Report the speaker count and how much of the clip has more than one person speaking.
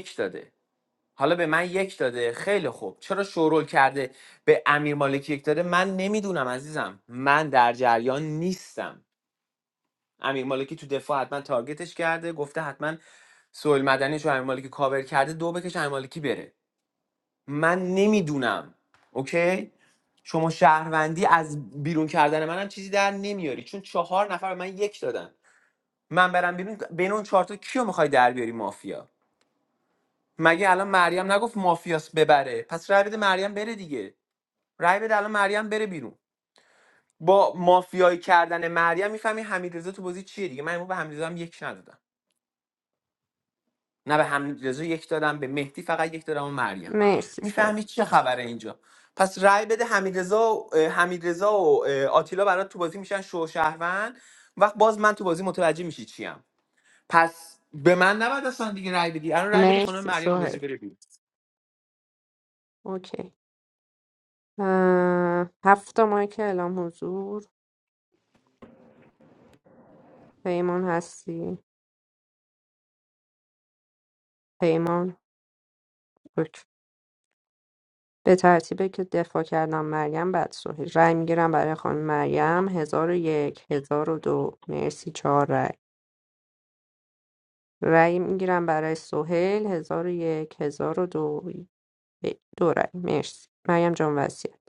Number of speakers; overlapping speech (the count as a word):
two, about 1%